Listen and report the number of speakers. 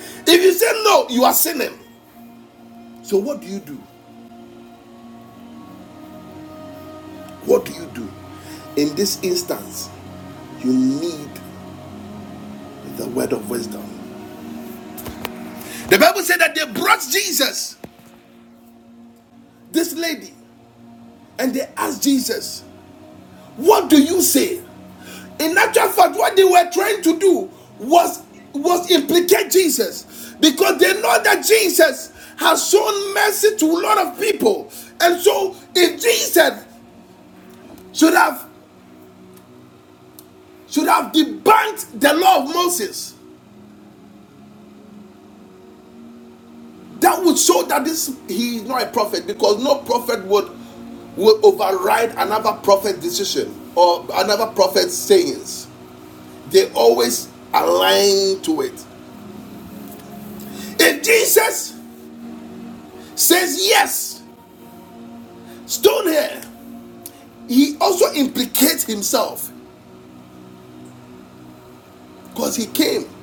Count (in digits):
1